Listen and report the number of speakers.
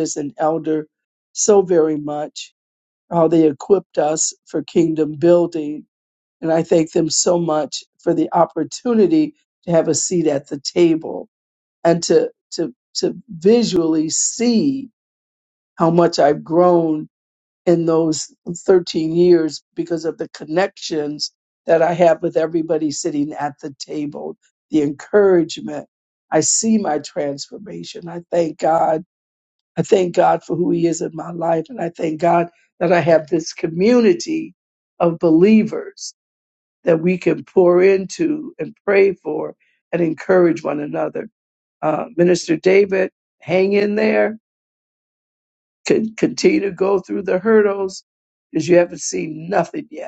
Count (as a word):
one